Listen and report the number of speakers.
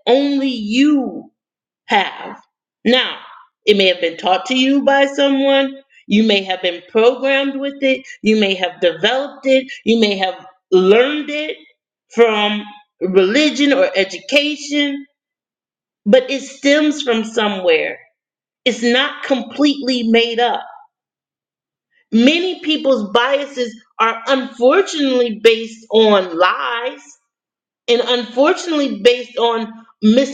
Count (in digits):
1